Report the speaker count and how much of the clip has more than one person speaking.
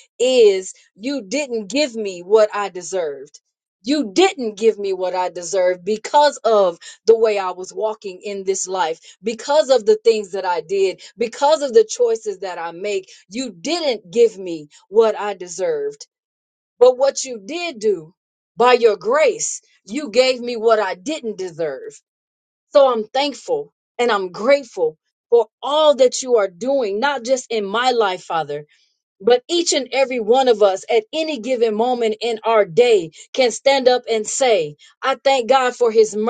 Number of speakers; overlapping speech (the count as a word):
one, no overlap